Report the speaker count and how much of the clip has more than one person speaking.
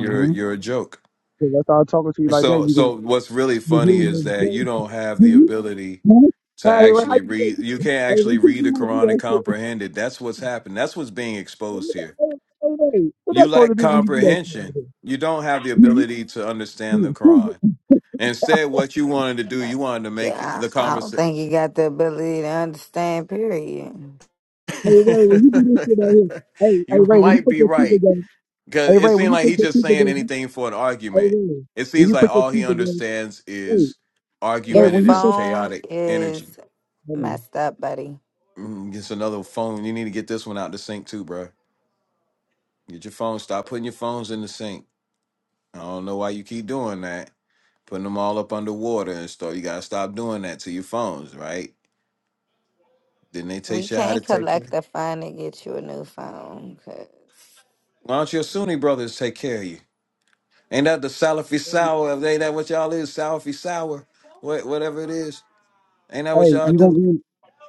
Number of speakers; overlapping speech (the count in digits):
3, about 22%